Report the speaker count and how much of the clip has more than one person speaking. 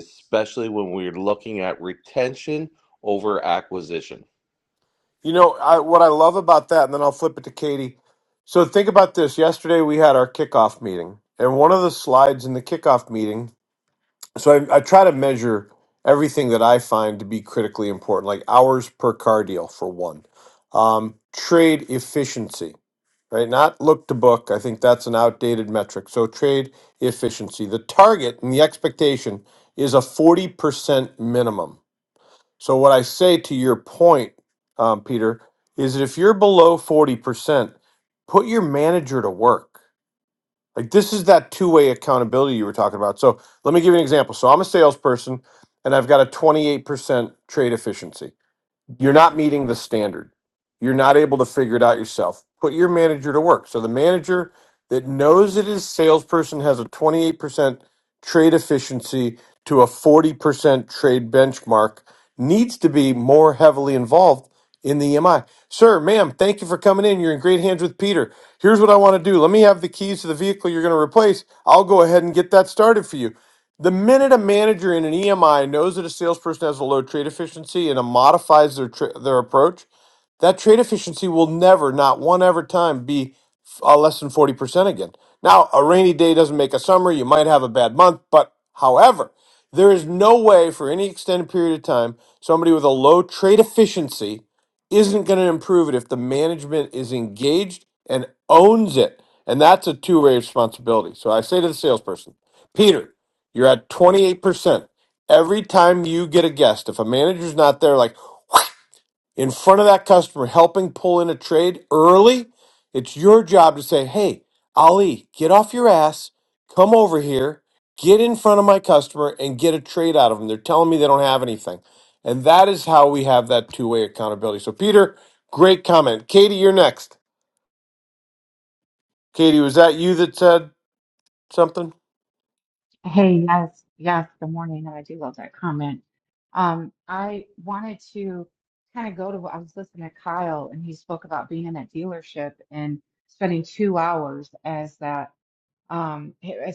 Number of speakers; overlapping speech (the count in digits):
3, no overlap